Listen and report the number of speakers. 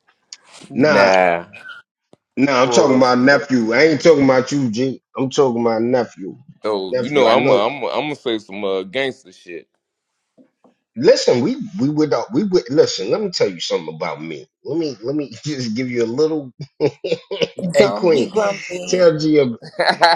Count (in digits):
3